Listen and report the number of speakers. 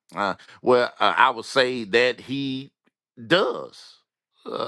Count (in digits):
1